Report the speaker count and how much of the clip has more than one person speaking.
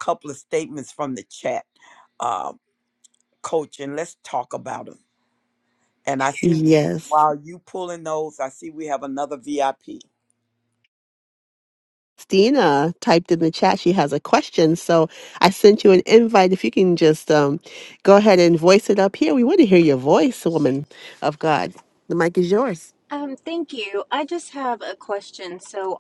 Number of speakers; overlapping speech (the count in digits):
3, about 1%